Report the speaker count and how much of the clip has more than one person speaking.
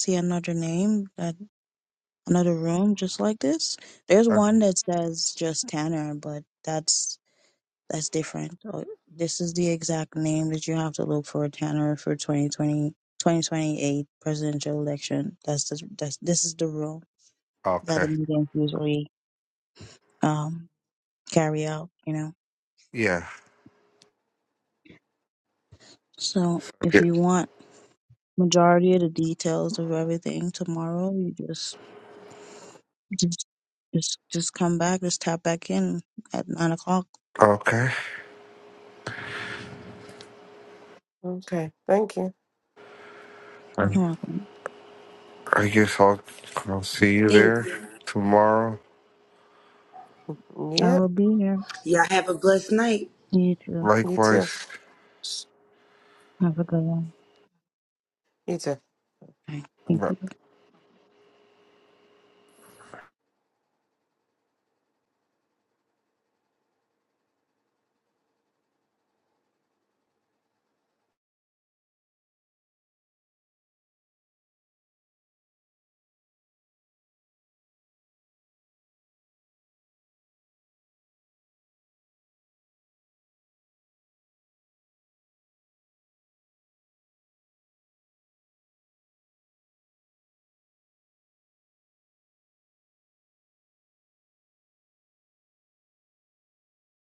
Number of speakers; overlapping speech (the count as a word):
four, about 2%